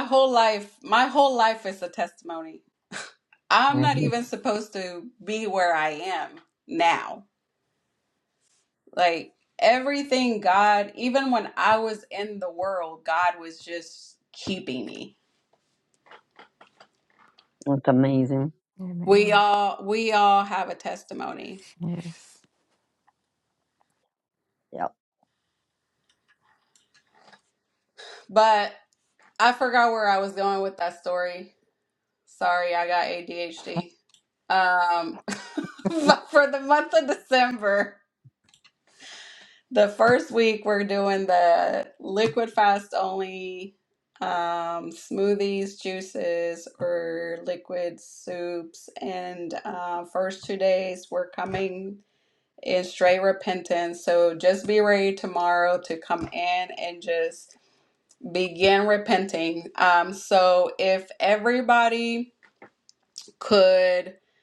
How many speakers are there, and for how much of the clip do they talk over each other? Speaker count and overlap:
3, about 1%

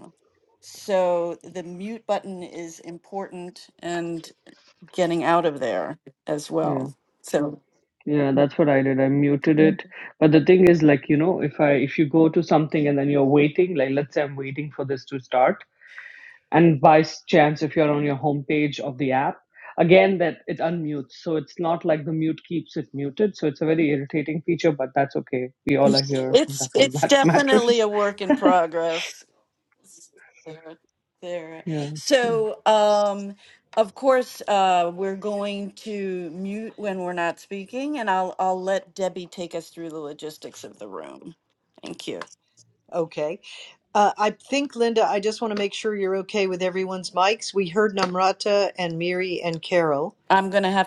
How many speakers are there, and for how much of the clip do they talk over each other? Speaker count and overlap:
3, about 5%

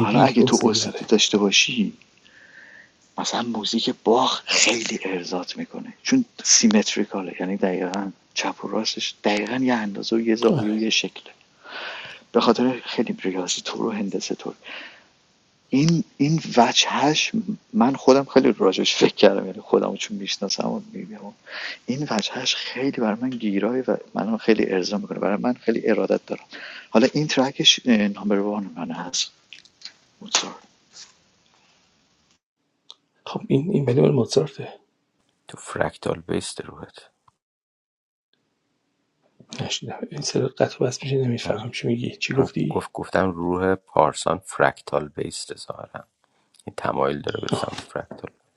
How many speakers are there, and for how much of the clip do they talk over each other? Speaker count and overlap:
3, about 4%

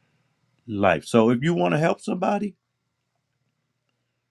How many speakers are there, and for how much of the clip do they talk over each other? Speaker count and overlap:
1, no overlap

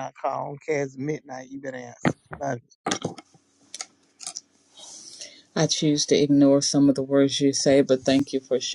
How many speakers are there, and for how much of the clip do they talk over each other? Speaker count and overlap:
2, no overlap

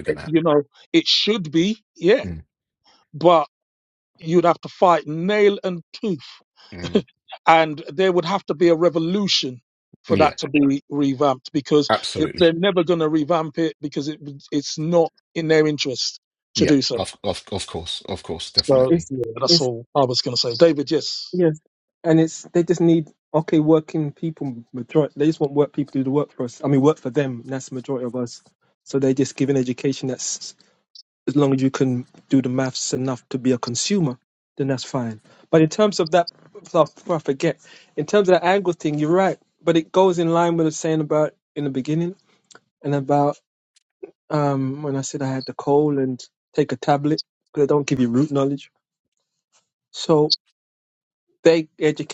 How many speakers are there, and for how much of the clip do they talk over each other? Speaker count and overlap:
3, about 4%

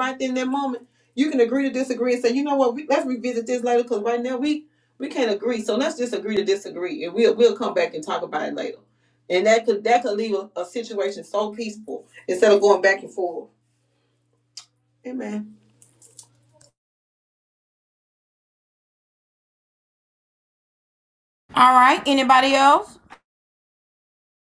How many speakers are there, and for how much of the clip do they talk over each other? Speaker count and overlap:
2, no overlap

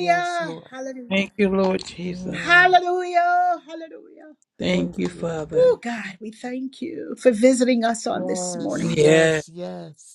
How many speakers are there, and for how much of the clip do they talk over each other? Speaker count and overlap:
3, about 32%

